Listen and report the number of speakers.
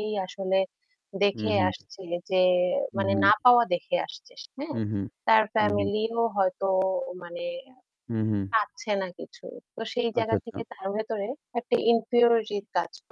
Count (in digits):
2